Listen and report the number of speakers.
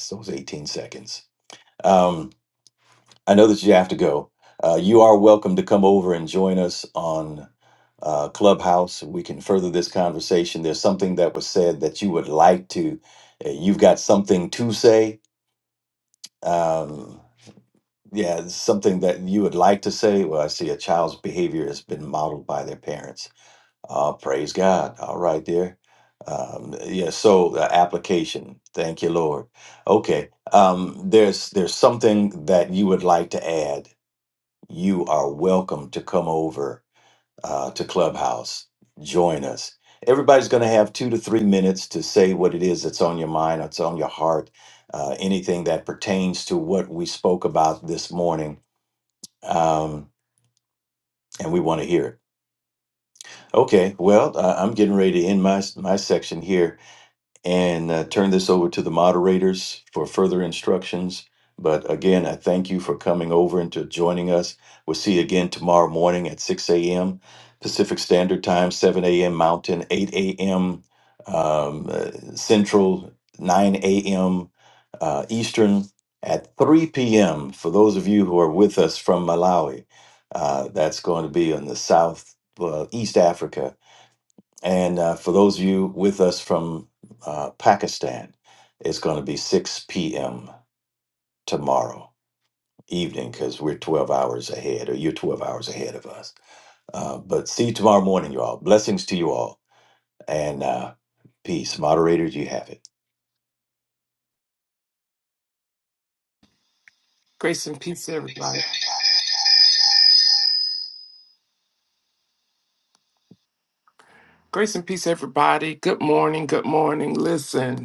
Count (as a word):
two